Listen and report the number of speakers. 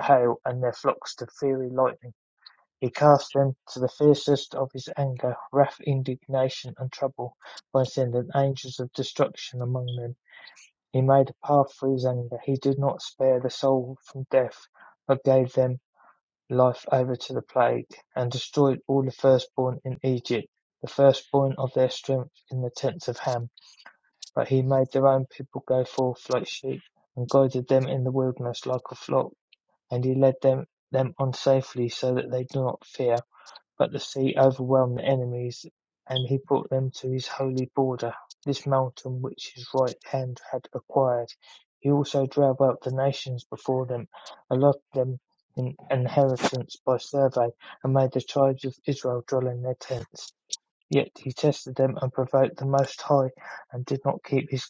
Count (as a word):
one